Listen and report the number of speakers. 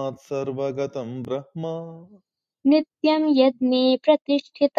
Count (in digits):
2